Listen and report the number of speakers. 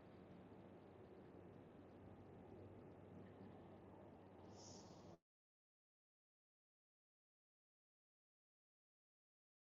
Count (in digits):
0